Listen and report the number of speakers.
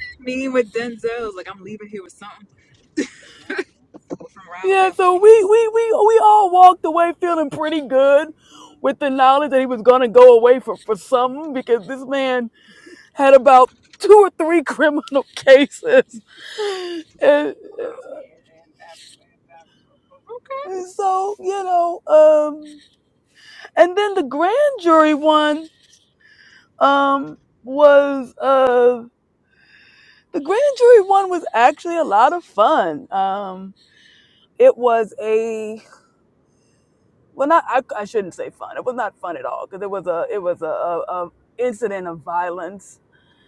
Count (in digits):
2